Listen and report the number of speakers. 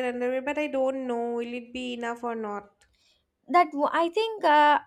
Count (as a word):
two